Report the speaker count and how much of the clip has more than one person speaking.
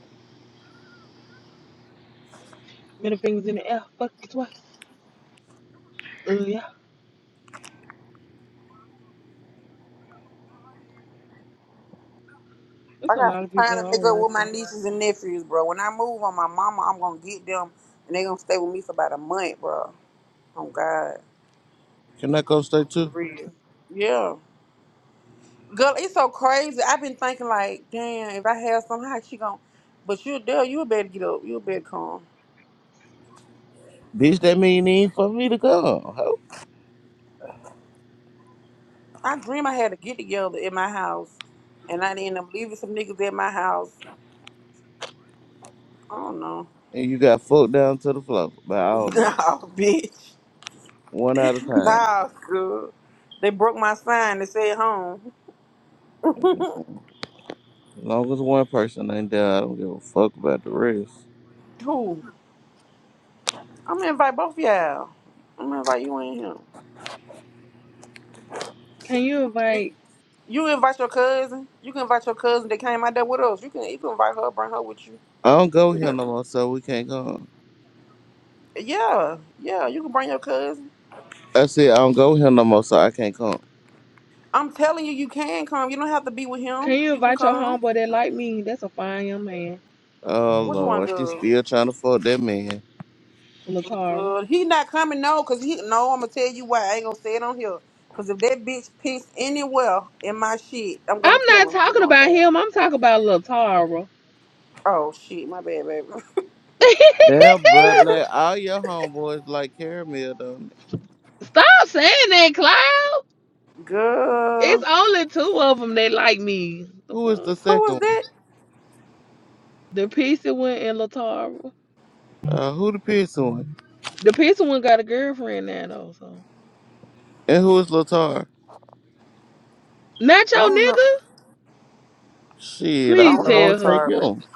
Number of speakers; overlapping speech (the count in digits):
3, about 6%